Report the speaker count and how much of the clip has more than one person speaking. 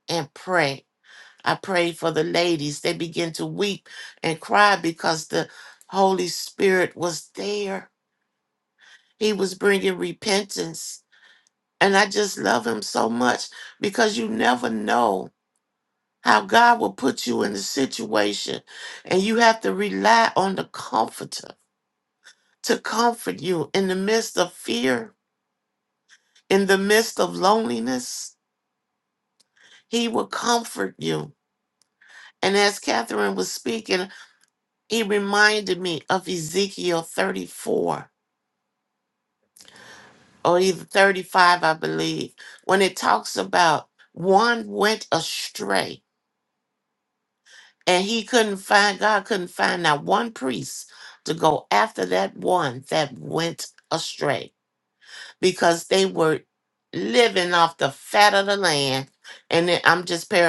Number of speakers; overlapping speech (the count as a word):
one, no overlap